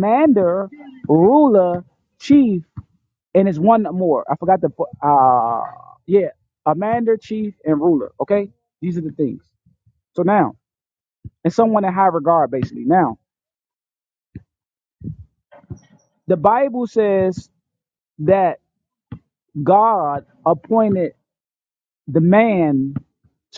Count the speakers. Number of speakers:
one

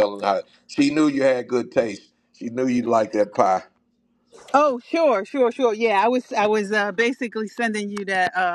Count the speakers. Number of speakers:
two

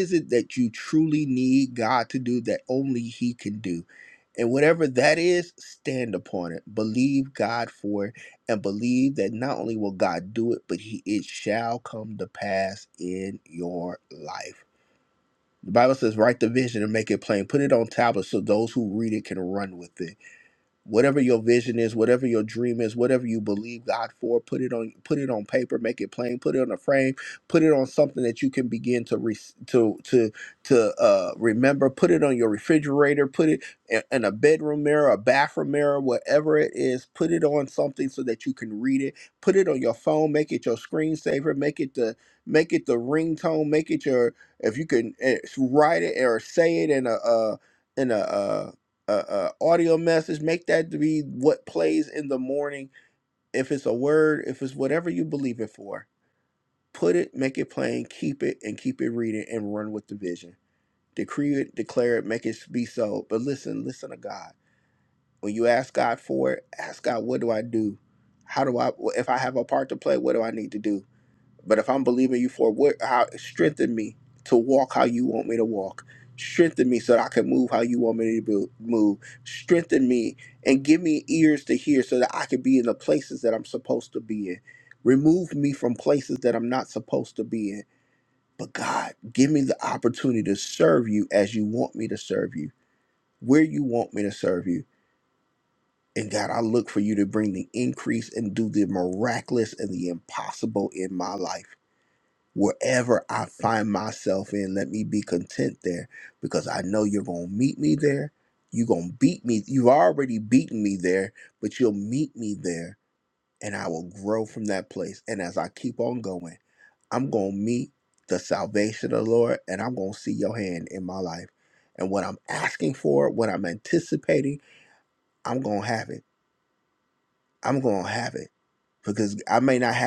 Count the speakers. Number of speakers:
one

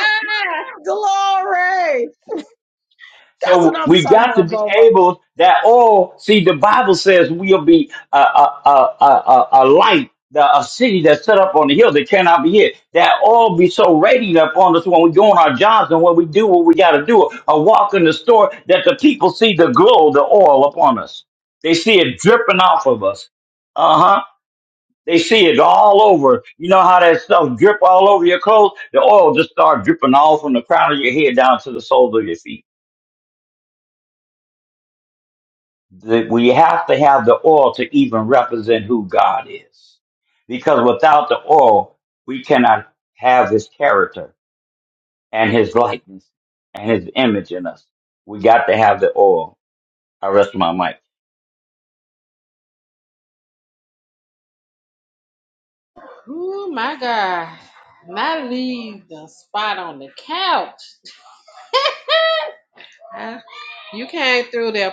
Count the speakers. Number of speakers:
three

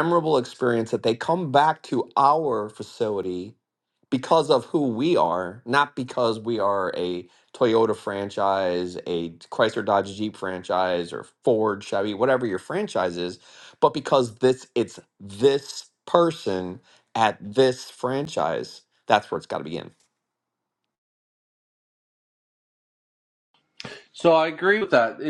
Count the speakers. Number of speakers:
two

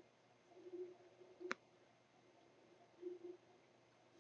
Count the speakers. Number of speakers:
zero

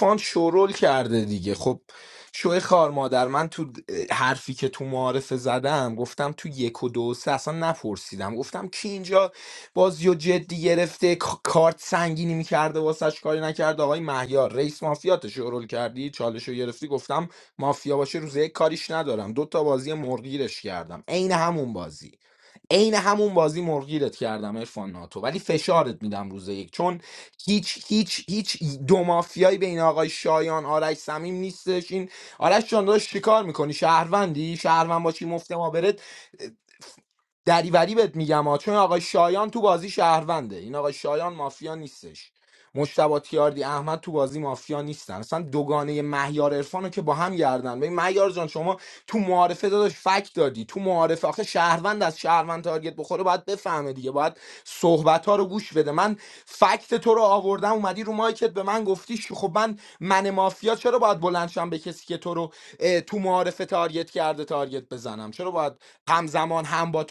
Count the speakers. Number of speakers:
one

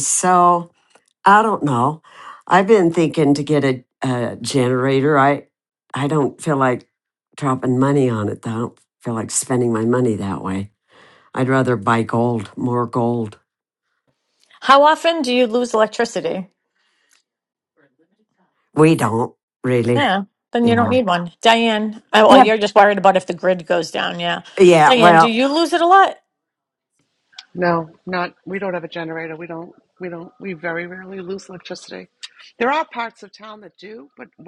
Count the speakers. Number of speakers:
three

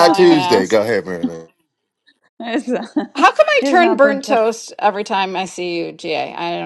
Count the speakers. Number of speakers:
three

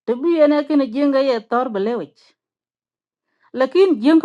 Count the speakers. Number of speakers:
one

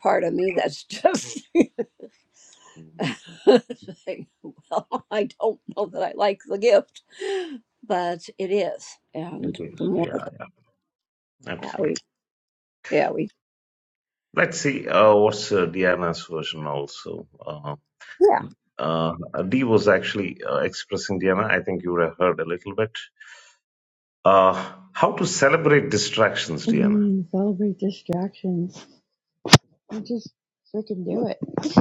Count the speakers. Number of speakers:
three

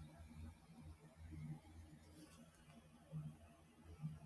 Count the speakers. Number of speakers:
zero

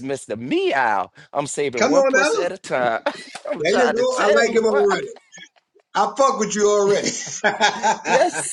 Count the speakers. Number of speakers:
two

